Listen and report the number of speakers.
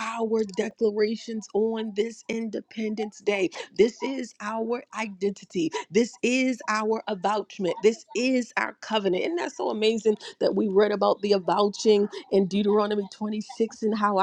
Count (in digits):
1